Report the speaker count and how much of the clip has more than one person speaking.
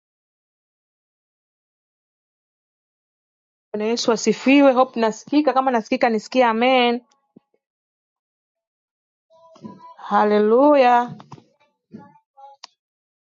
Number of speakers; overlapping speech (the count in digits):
1, no overlap